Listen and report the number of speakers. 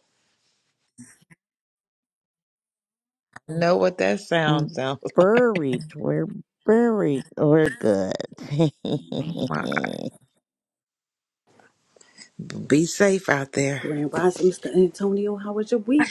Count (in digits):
3